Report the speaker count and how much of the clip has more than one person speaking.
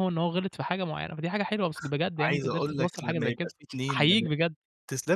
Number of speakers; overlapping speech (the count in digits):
2, about 33%